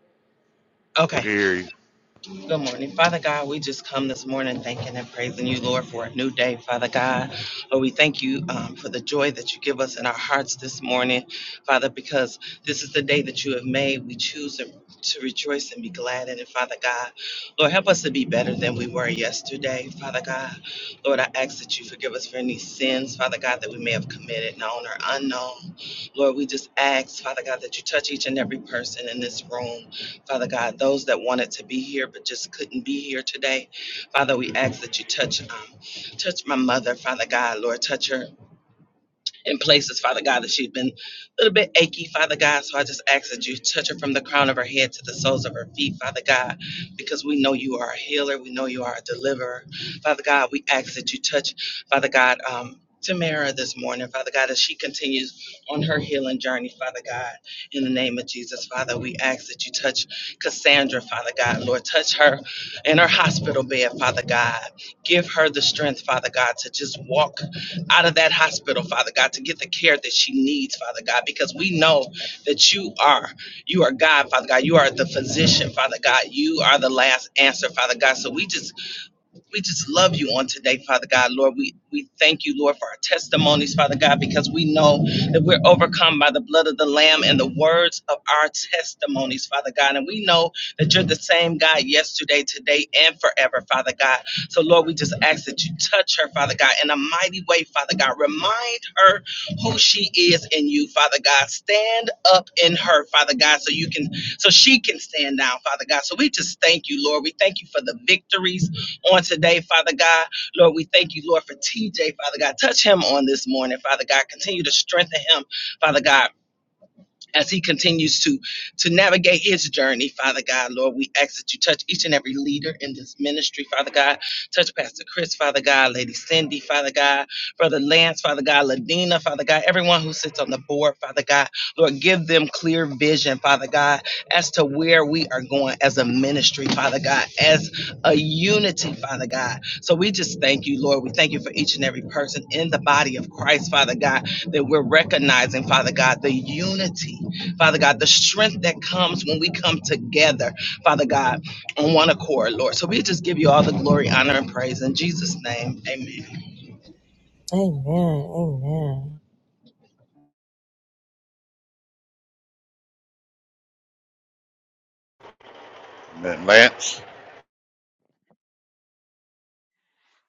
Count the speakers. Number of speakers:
3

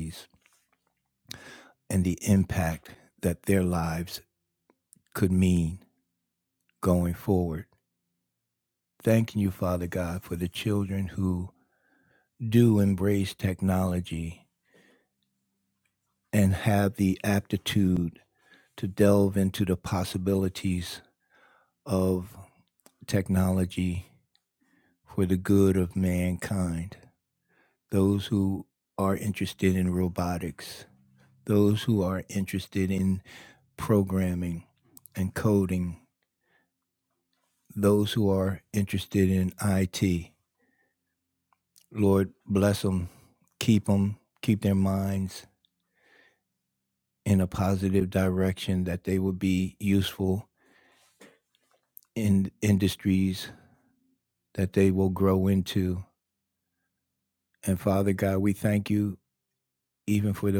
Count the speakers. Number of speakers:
1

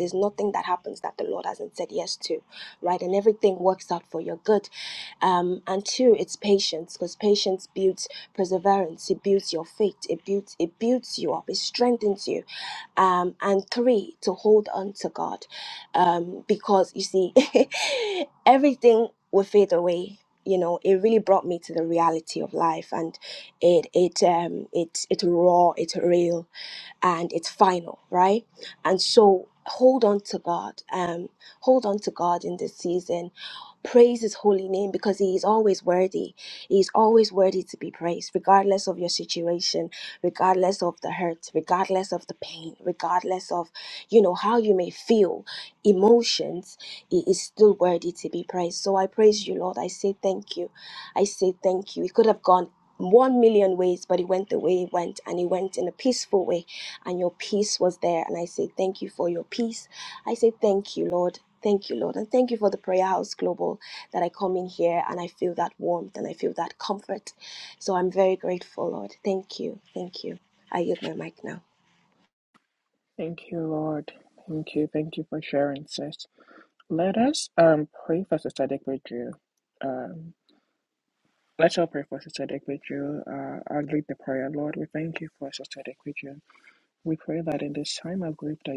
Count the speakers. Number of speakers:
2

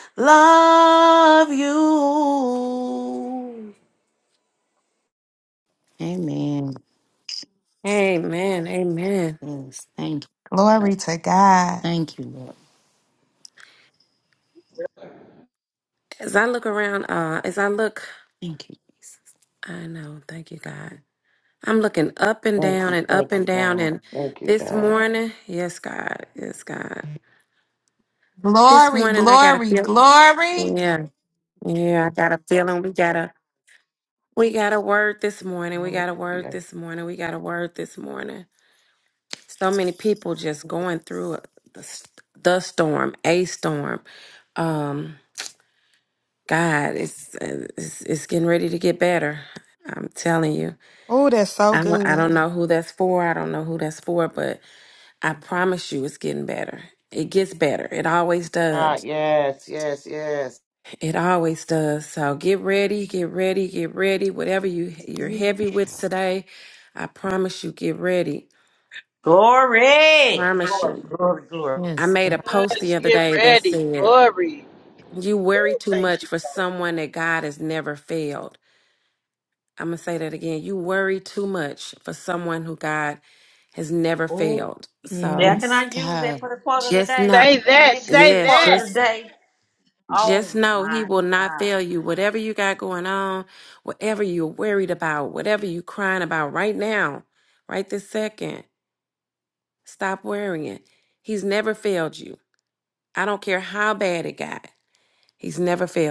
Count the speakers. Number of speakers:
7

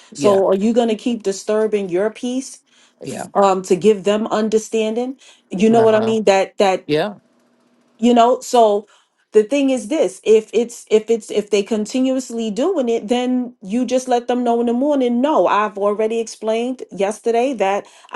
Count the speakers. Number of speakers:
2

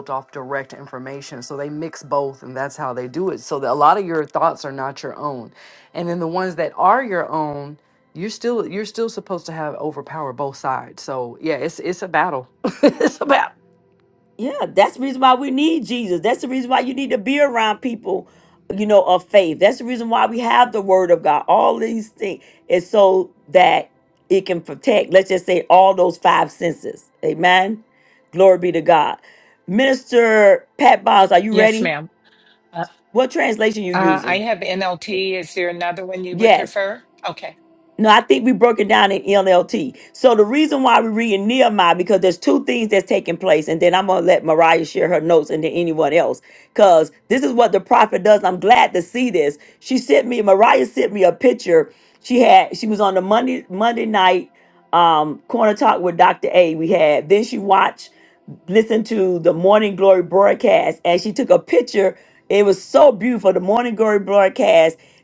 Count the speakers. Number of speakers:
3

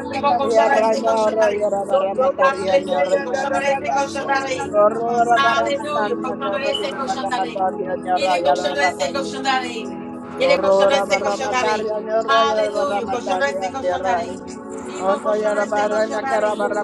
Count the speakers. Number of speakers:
2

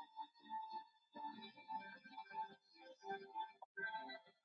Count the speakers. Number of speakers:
0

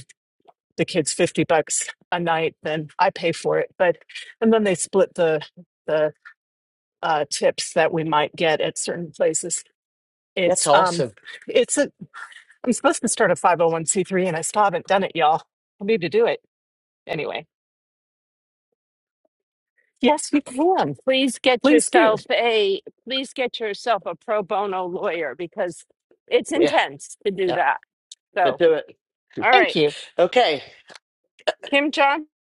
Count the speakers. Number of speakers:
3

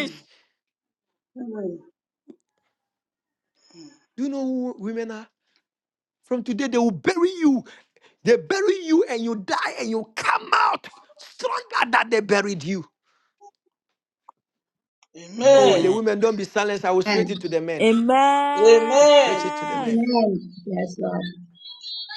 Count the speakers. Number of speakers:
4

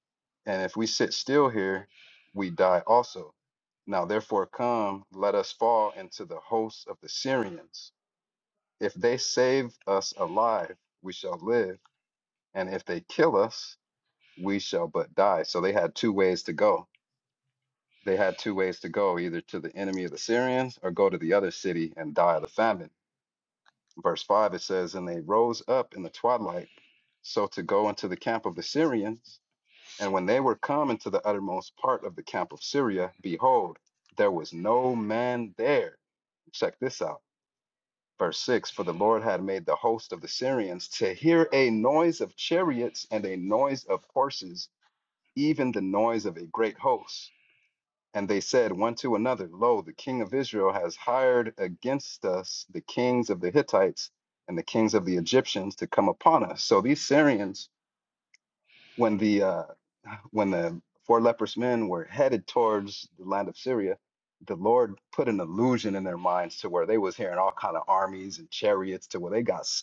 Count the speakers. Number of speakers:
1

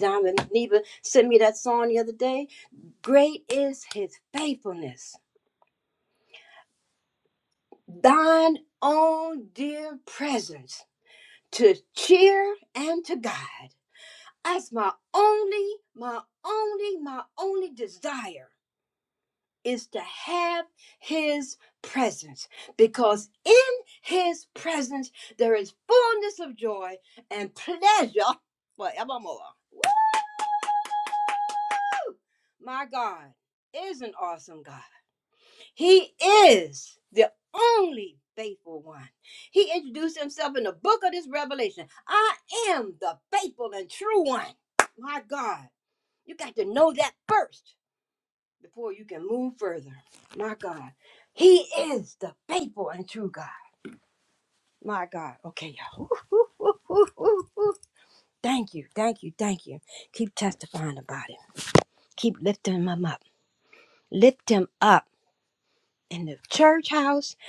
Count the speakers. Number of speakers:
1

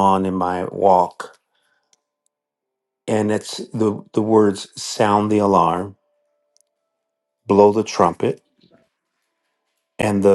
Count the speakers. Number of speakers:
1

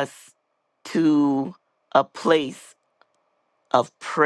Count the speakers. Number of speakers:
1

